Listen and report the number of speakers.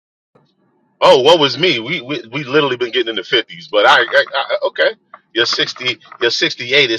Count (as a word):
one